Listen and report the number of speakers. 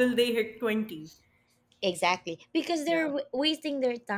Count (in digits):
2